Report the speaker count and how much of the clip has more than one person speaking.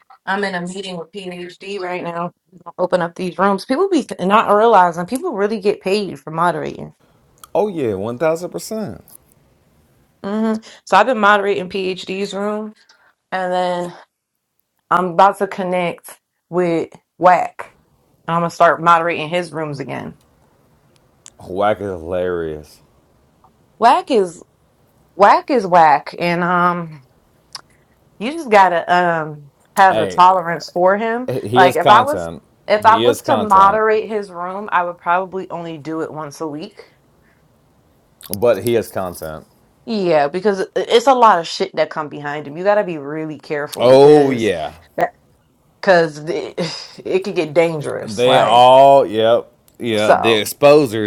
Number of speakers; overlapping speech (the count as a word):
two, about 7%